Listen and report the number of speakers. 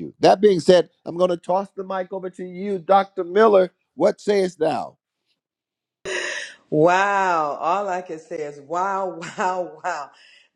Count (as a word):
two